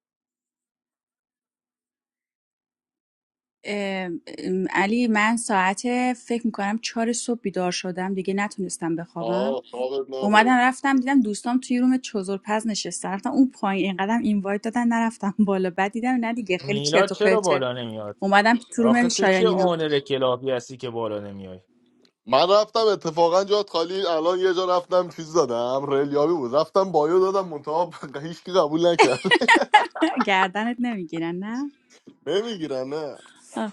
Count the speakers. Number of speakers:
3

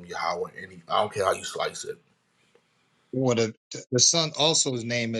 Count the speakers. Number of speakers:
2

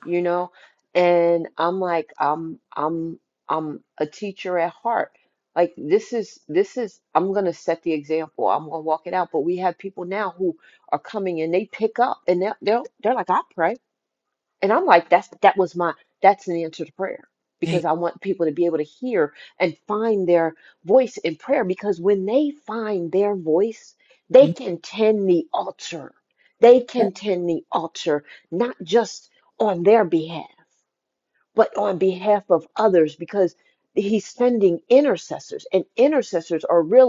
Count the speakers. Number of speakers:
1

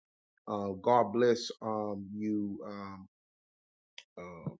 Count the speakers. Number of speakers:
1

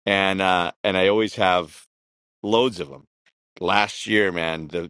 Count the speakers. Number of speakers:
1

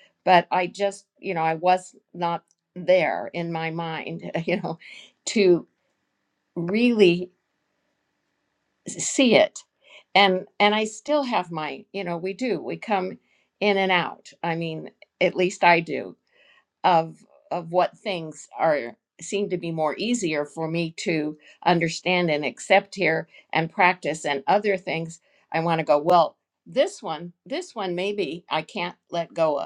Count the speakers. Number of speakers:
1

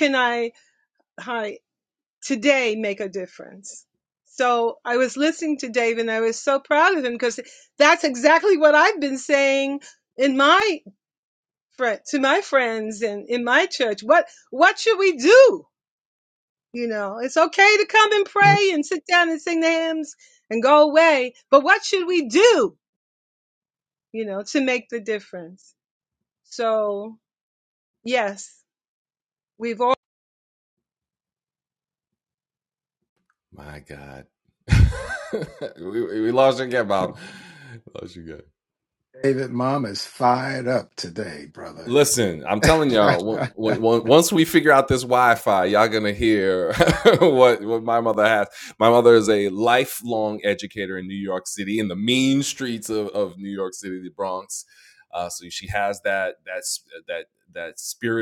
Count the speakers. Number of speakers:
3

